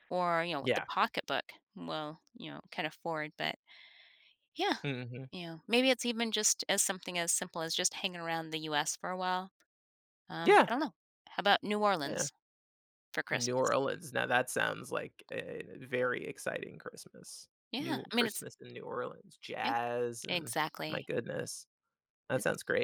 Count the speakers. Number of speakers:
2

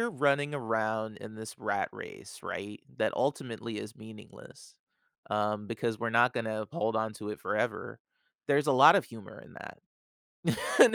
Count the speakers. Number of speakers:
1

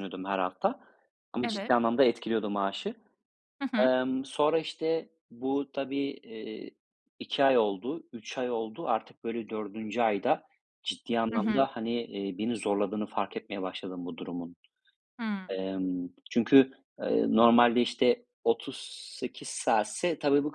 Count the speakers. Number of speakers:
2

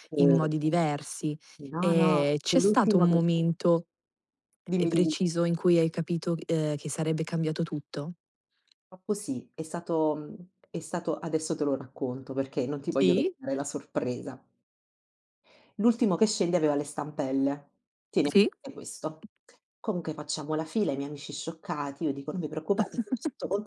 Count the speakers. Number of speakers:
2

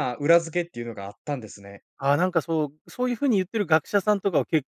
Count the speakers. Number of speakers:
2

